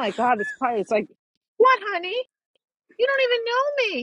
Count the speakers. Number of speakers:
1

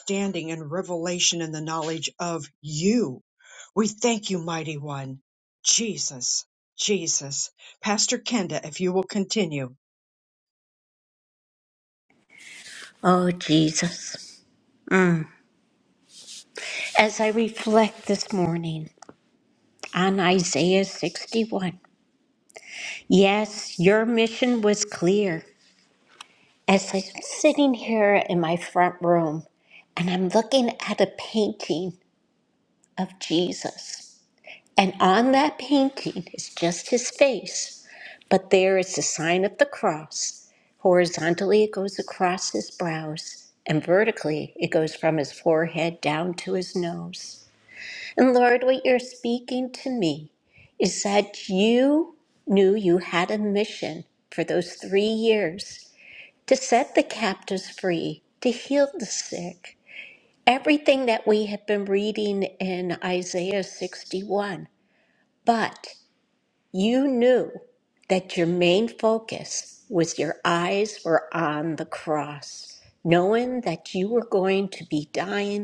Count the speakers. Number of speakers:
2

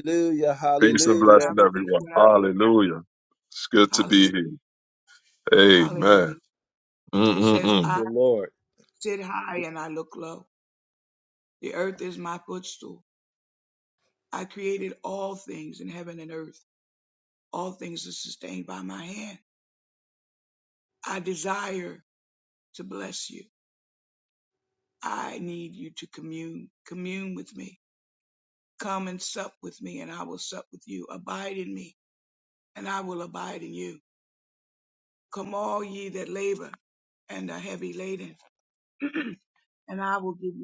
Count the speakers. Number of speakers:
3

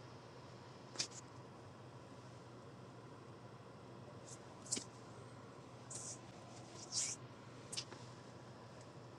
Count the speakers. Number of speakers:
0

